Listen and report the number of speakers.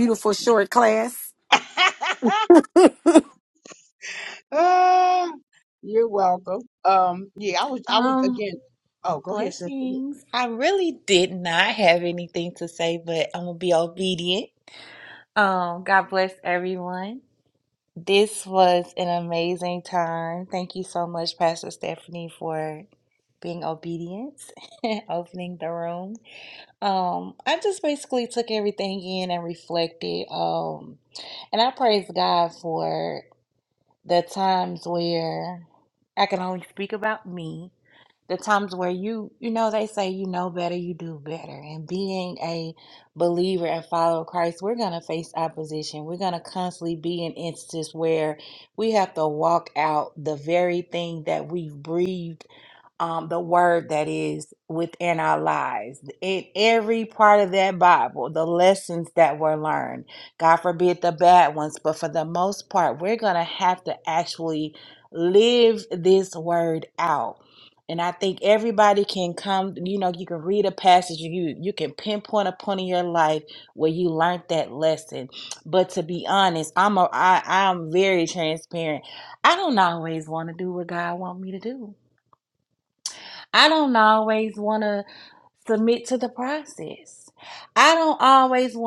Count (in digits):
3